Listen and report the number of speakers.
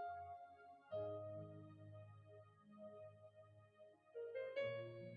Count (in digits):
0